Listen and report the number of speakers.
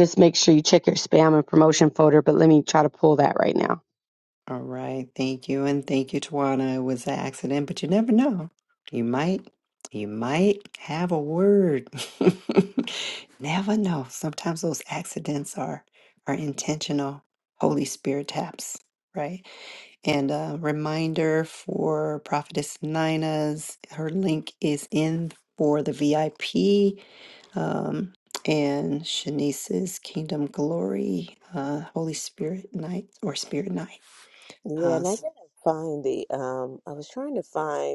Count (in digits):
3